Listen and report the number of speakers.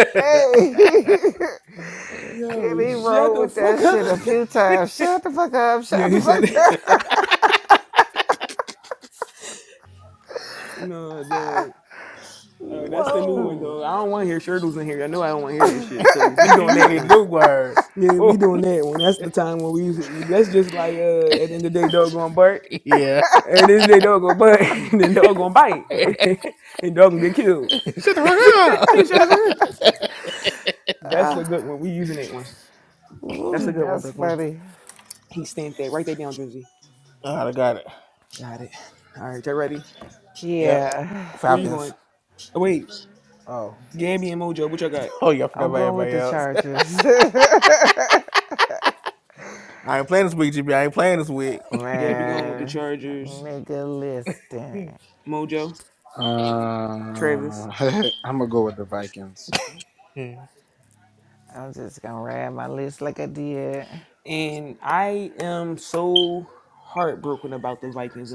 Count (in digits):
4